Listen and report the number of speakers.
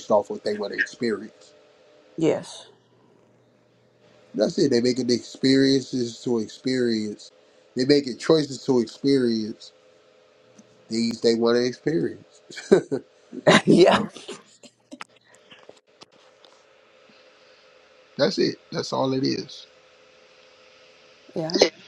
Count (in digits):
2